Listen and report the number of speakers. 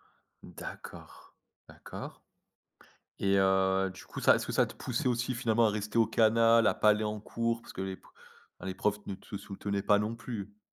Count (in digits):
1